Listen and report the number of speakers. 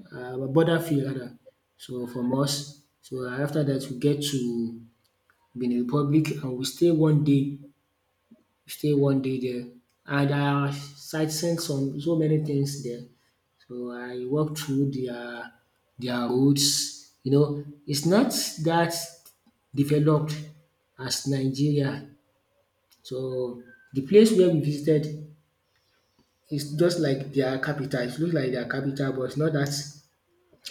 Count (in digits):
1